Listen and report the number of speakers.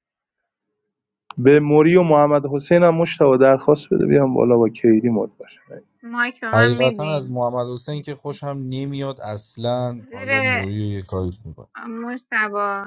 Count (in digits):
3